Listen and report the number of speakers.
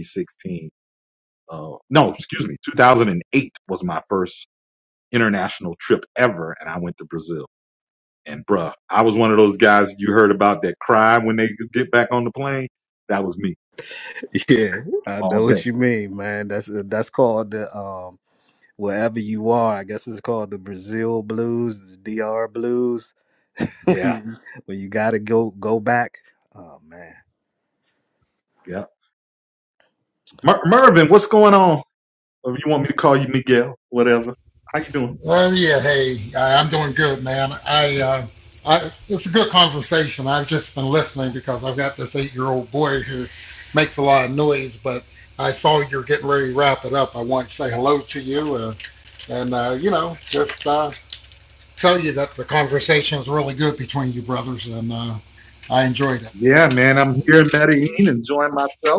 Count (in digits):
3